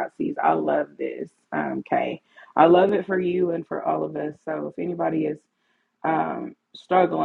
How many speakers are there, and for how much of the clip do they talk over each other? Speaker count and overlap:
one, no overlap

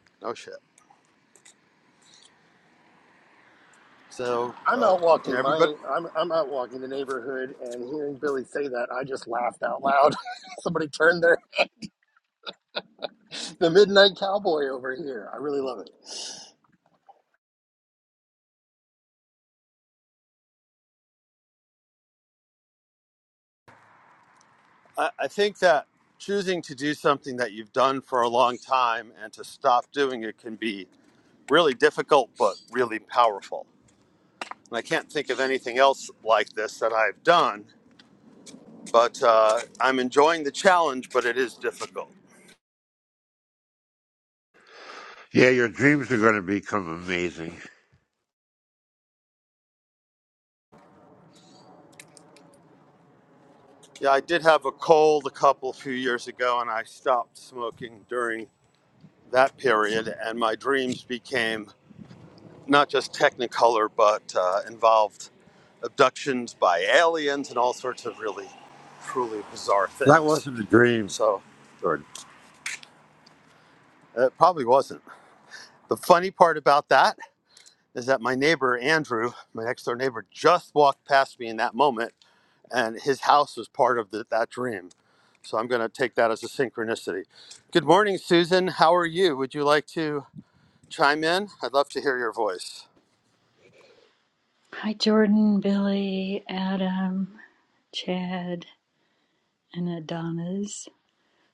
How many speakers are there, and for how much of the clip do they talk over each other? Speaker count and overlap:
four, about 1%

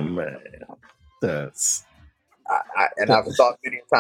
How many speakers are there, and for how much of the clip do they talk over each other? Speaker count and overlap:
two, about 8%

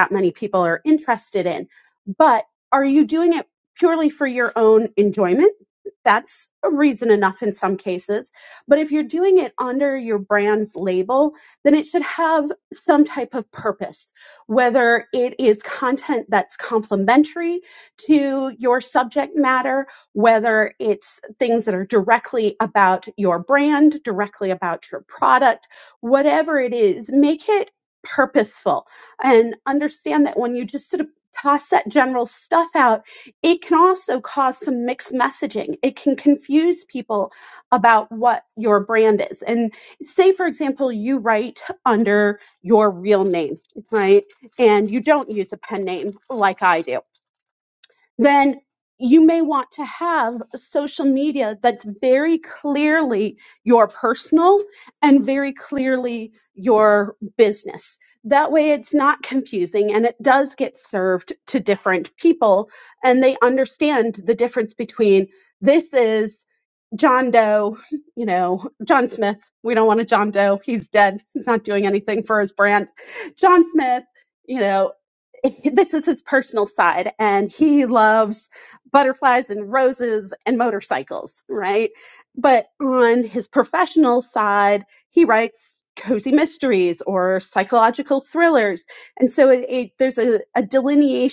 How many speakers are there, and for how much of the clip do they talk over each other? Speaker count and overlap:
one, no overlap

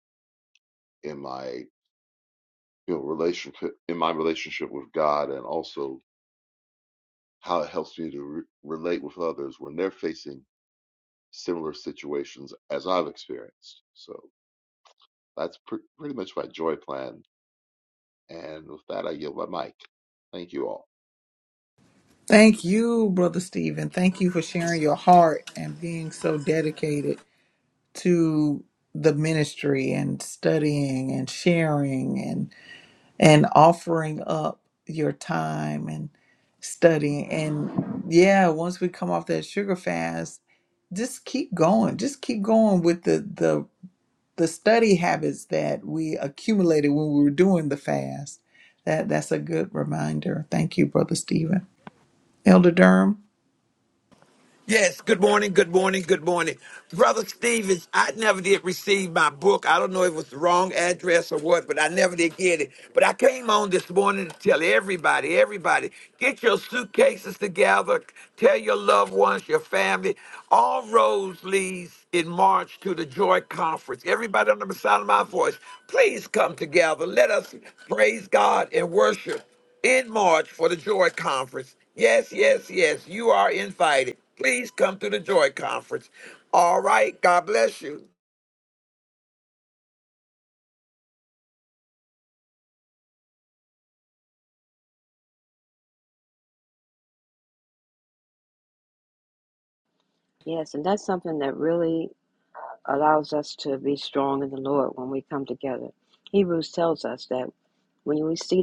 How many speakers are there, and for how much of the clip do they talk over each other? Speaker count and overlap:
four, no overlap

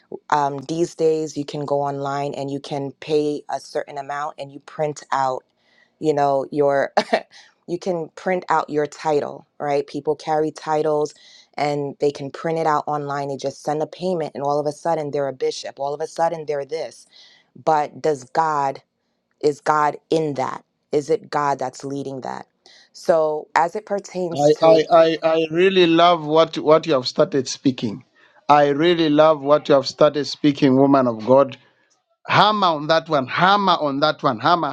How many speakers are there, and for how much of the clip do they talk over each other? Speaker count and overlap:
two, about 1%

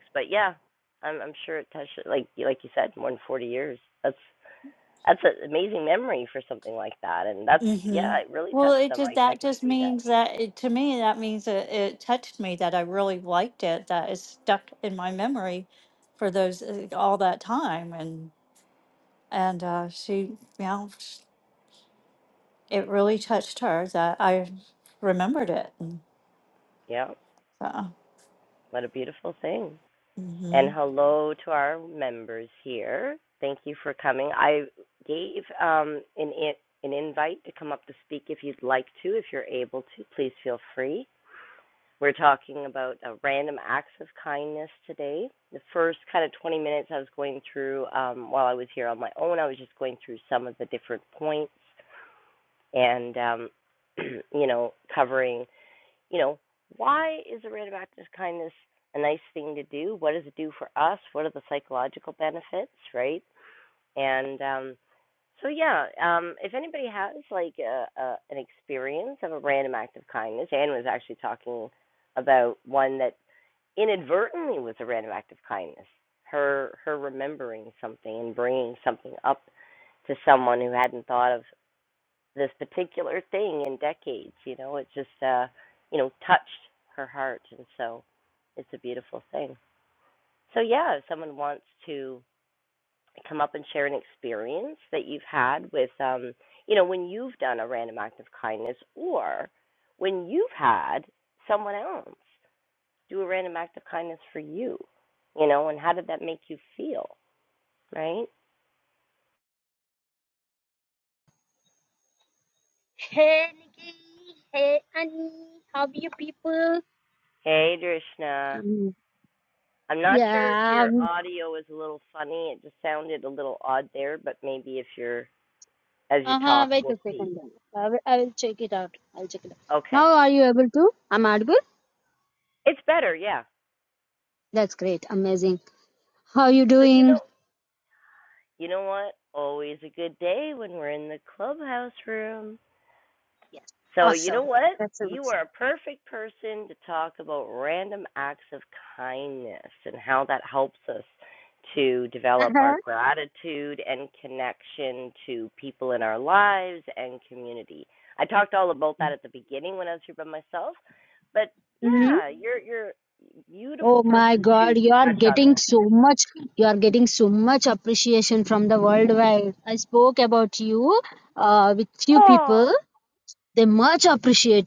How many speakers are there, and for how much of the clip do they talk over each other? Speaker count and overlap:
three, about 5%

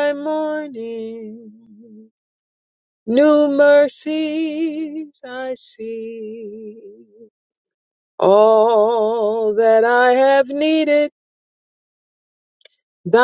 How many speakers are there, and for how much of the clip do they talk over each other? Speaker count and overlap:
one, no overlap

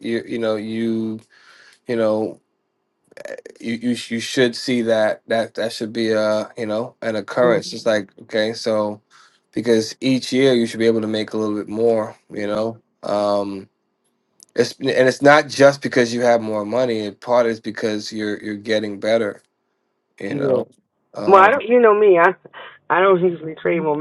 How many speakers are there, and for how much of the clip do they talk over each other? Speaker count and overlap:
two, about 2%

